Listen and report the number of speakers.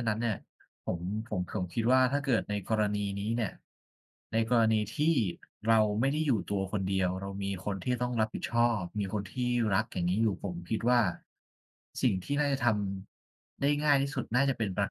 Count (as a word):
one